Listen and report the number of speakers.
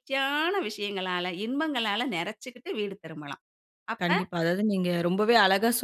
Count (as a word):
two